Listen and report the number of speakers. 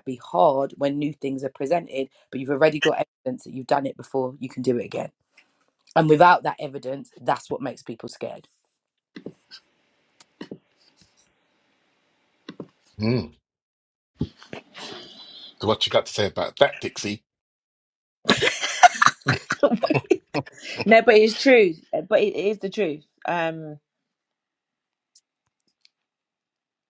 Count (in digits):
3